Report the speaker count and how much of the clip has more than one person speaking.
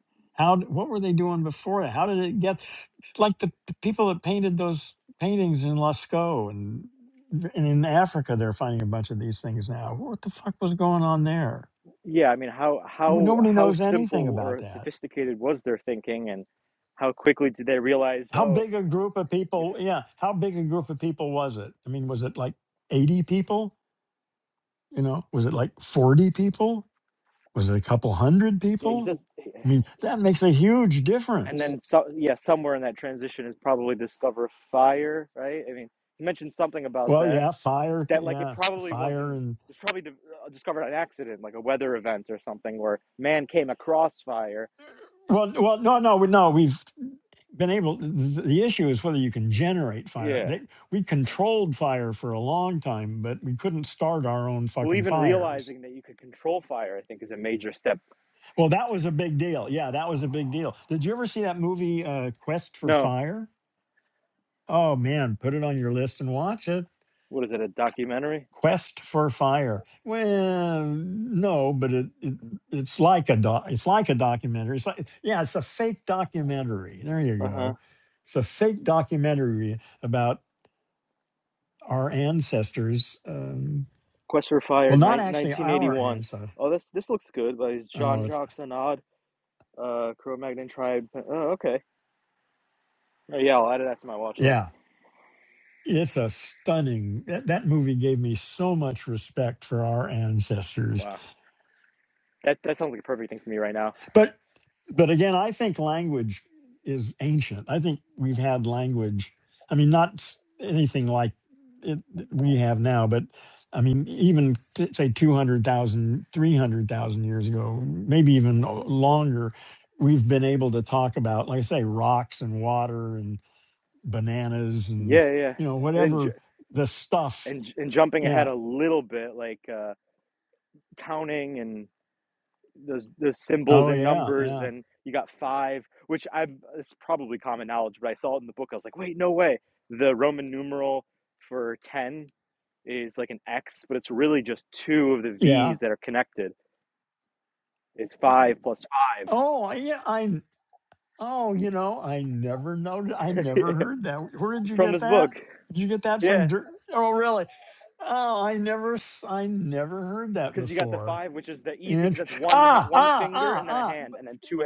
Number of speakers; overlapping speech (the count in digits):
2, about 9%